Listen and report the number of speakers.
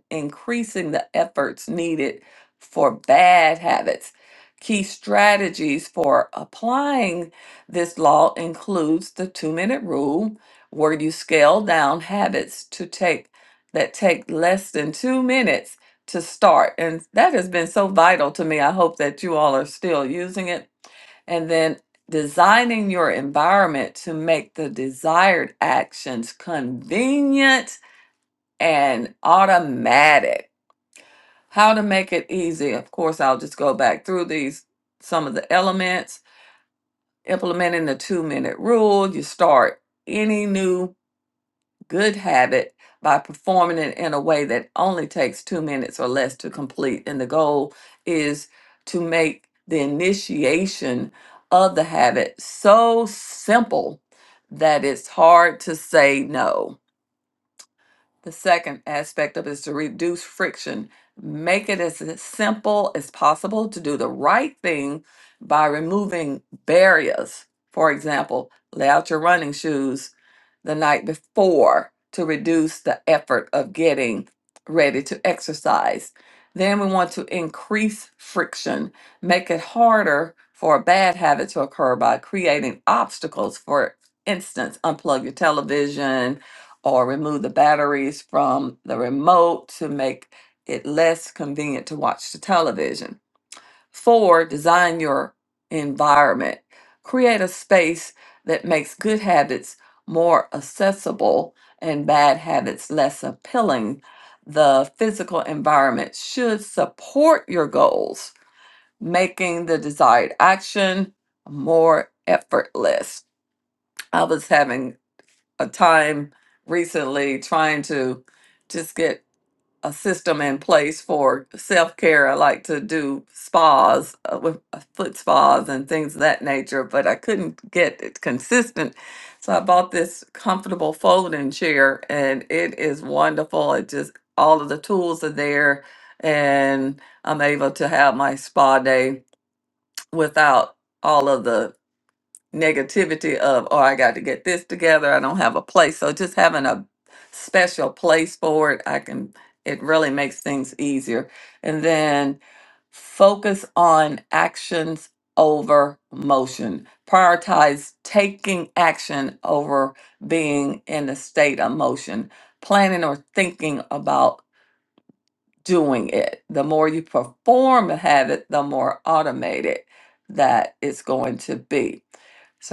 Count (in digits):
1